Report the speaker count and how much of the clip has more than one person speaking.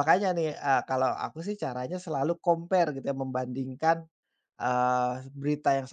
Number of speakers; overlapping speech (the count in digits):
1, no overlap